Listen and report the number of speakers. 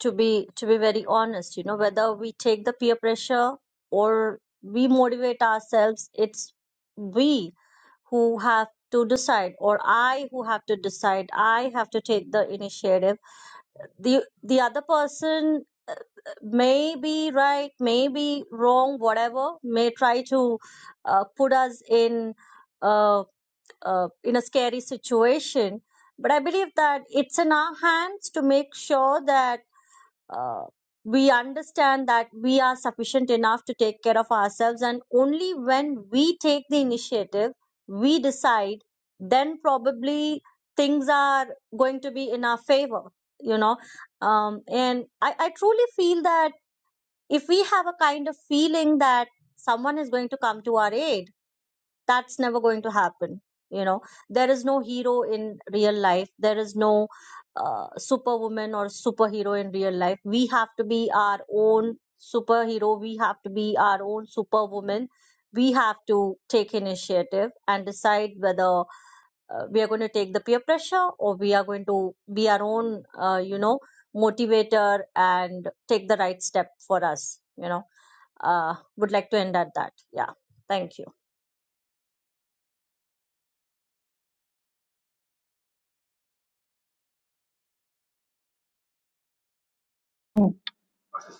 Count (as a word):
one